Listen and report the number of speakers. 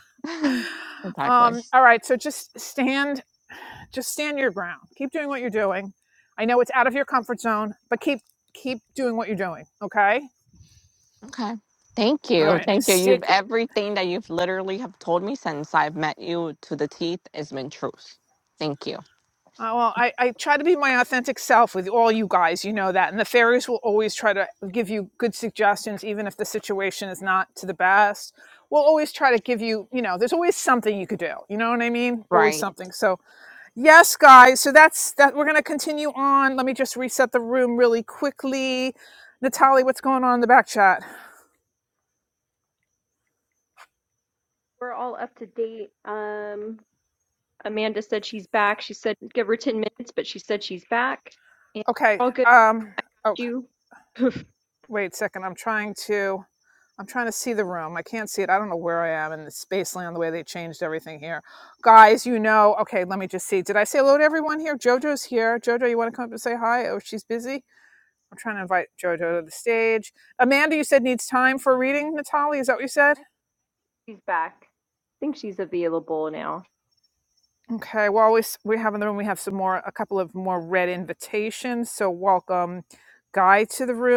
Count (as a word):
three